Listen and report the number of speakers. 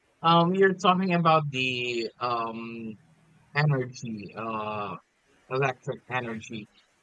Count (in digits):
1